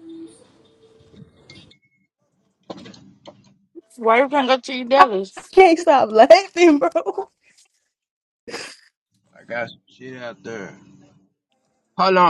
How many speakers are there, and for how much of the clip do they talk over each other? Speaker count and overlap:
3, about 1%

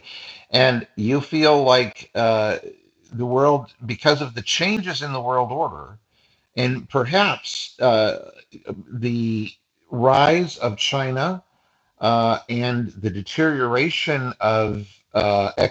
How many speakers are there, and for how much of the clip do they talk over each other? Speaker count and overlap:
1, no overlap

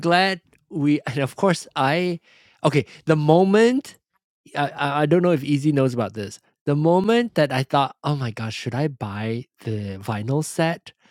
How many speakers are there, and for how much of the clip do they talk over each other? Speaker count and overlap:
1, no overlap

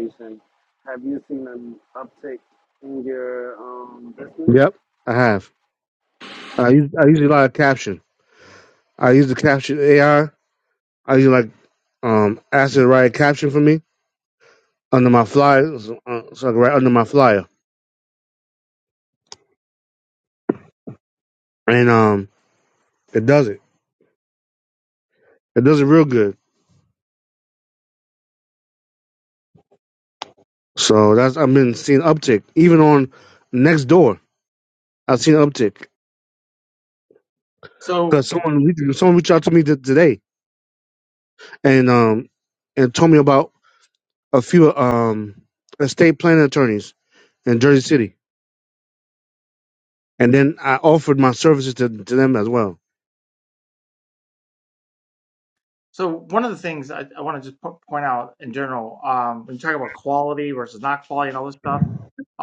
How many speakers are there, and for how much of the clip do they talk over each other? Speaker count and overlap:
3, under 1%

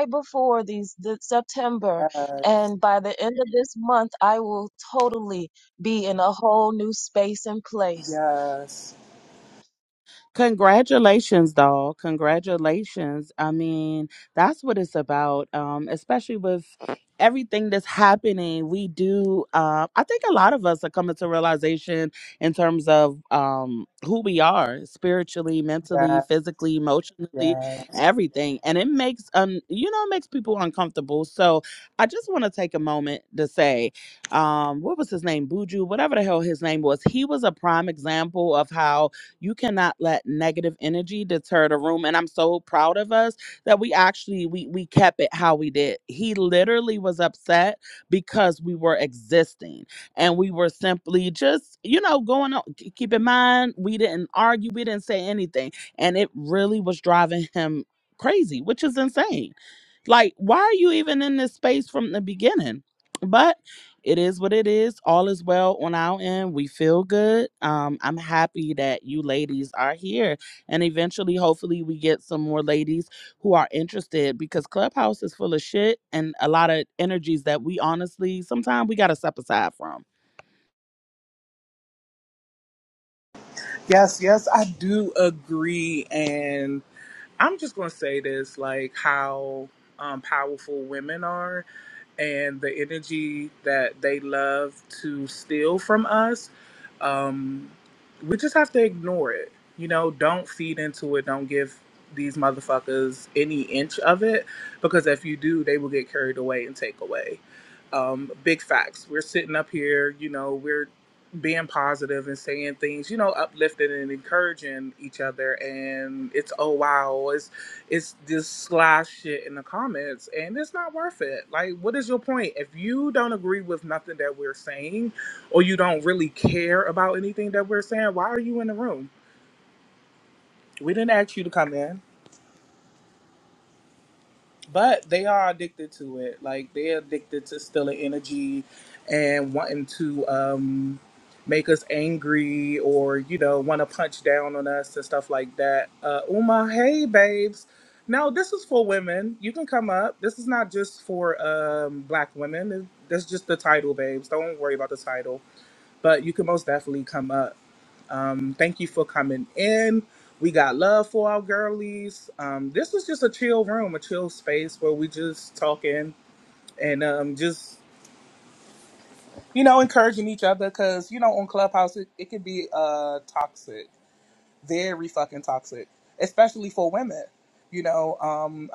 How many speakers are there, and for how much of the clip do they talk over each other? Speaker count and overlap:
3, under 1%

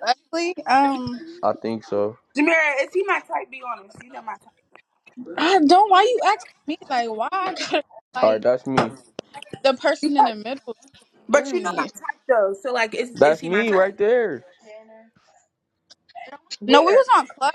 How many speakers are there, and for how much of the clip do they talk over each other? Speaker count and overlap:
3, about 12%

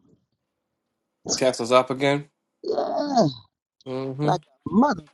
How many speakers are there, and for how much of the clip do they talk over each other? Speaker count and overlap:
2, about 2%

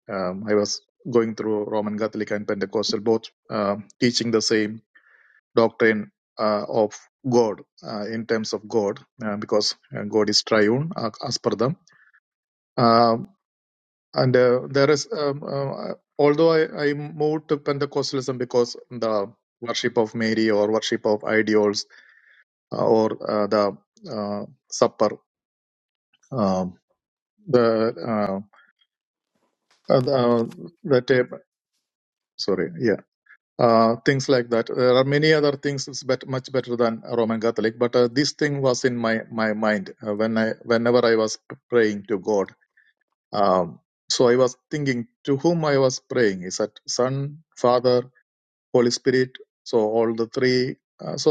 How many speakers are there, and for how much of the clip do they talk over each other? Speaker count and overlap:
1, no overlap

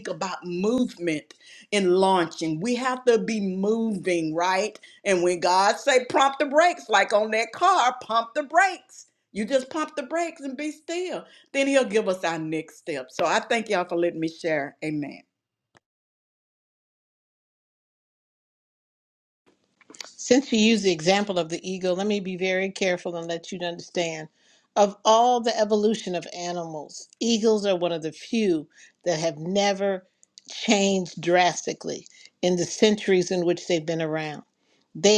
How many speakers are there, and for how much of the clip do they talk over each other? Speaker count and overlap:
2, no overlap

